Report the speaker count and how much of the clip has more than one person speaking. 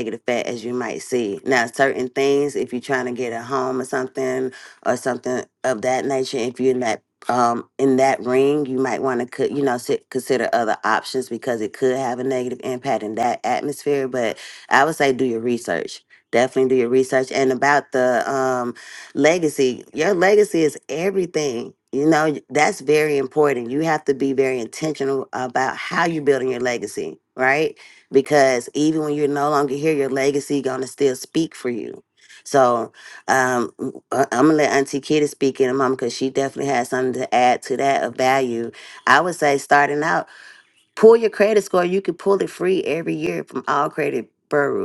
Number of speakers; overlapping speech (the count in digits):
1, no overlap